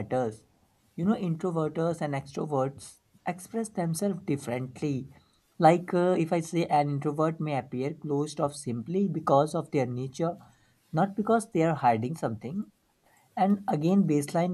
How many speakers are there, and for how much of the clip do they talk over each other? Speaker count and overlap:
1, no overlap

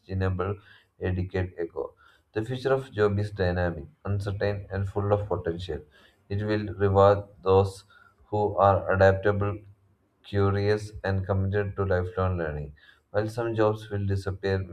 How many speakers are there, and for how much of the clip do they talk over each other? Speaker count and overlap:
1, no overlap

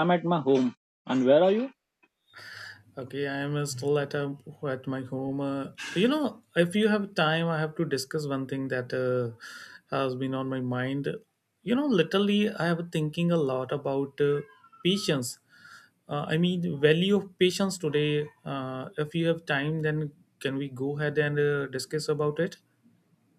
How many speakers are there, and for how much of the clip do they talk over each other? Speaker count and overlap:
2, no overlap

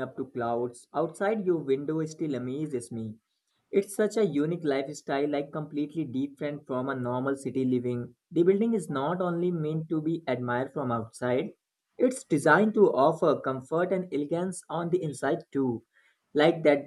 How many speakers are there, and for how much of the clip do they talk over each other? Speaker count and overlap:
1, no overlap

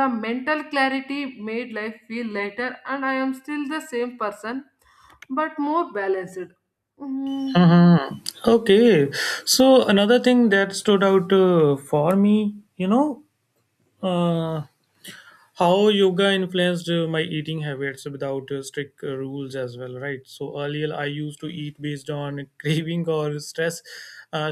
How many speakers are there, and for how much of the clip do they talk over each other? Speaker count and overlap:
2, under 1%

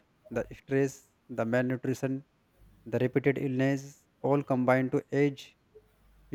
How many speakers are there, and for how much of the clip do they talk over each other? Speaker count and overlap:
1, no overlap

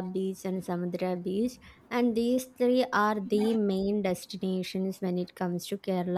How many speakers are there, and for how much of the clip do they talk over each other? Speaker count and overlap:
1, no overlap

